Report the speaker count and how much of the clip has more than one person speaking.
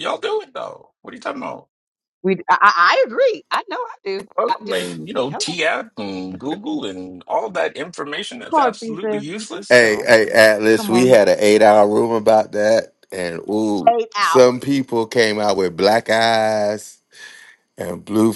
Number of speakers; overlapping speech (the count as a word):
three, about 16%